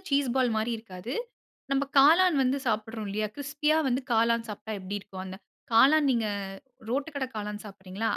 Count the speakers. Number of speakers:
one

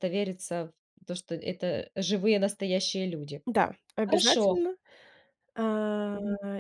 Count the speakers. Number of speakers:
two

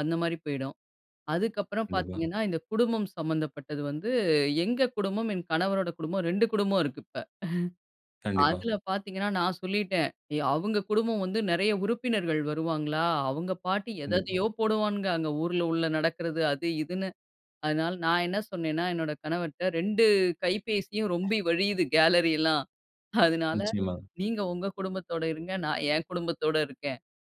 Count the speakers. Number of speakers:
two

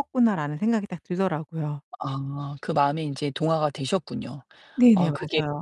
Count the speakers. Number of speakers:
two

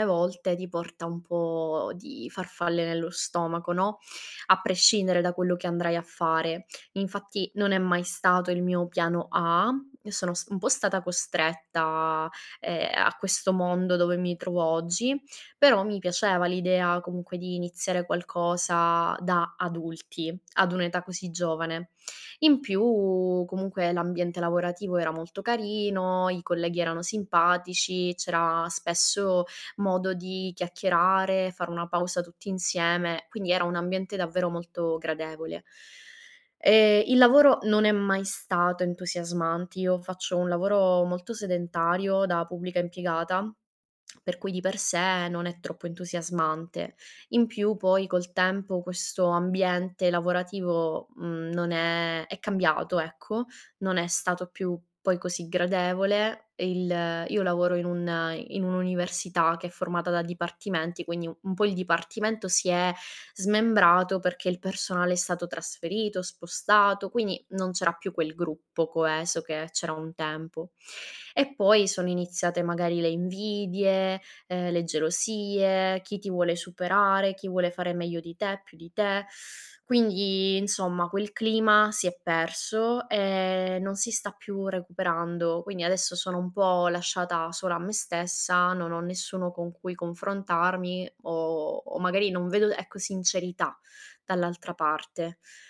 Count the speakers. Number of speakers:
one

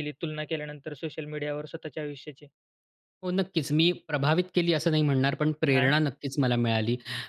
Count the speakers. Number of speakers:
two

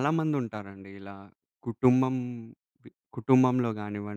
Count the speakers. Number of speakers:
one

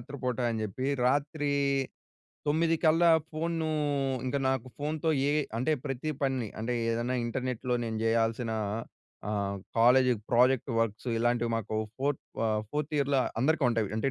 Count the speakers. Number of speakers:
one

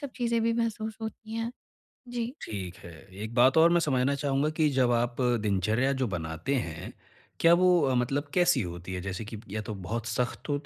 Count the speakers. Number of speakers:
two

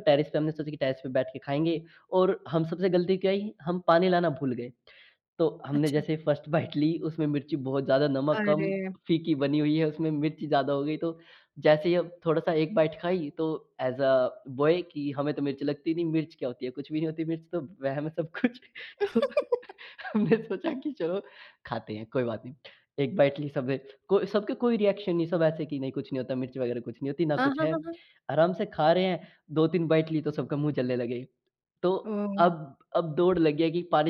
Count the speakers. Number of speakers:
two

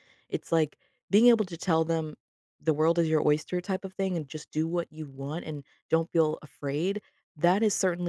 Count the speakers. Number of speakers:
one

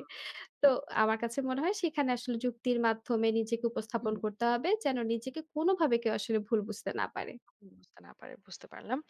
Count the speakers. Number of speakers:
two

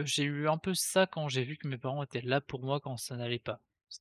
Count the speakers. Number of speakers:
one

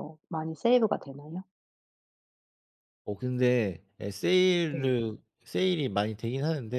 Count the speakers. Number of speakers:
two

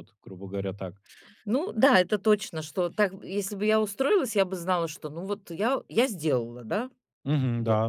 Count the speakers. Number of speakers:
two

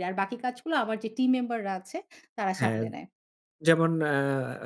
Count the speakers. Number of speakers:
two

